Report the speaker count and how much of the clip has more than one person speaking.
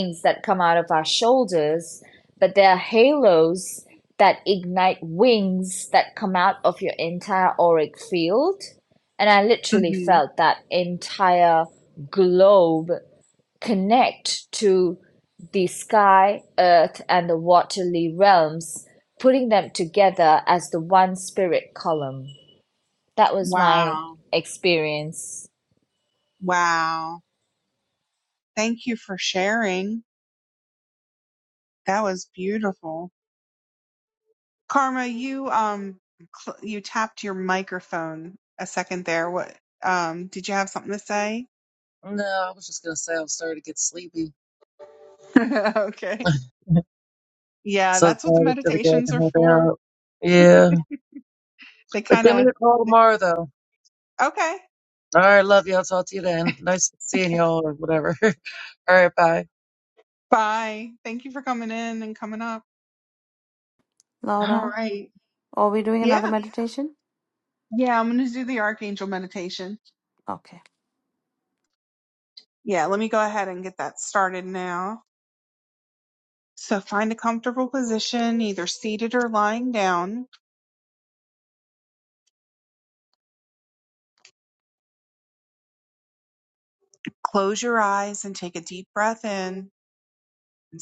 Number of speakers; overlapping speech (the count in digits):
4, about 4%